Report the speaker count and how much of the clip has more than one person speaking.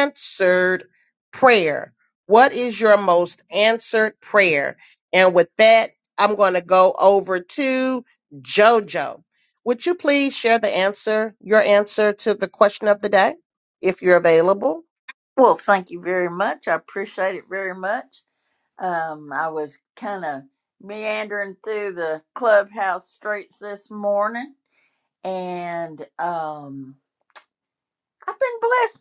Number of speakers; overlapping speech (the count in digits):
2, no overlap